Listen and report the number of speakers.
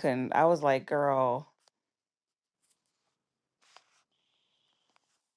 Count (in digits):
1